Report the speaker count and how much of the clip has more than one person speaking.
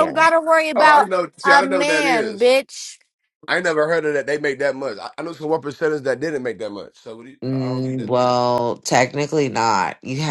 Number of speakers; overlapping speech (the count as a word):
three, about 21%